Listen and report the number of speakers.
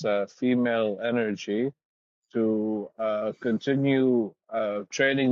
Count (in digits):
1